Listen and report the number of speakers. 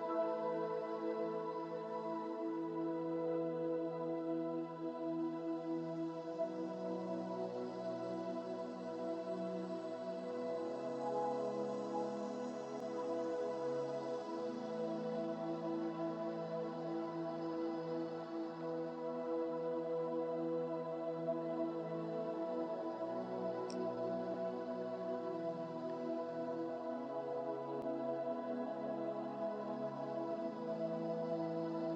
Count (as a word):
zero